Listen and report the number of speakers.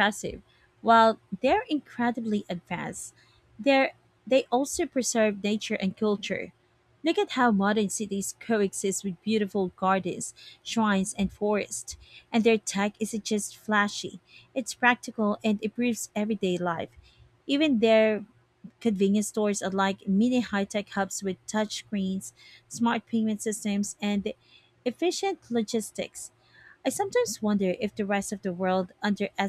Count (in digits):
1